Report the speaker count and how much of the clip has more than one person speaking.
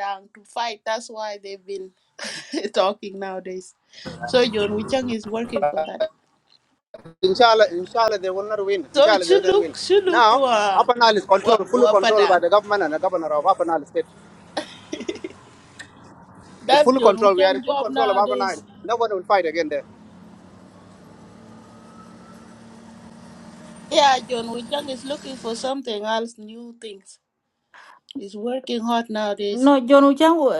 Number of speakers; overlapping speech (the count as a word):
three, about 13%